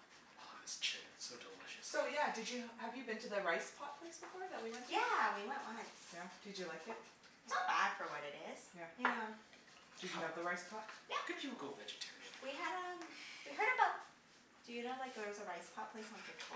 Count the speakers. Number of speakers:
3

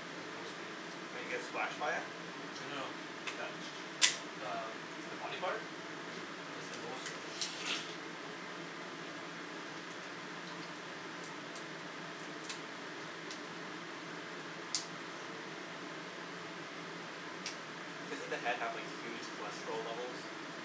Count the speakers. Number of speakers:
2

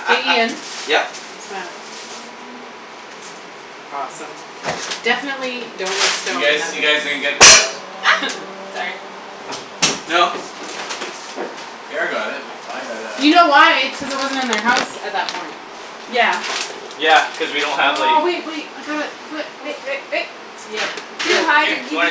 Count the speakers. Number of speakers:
4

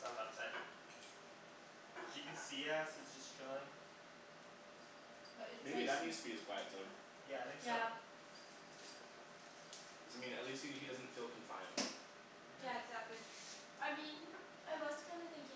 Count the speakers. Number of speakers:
3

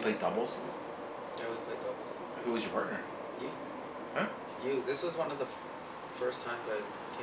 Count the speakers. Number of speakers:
2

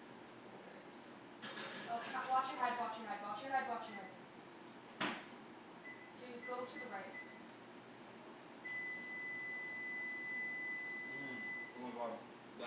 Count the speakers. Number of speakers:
2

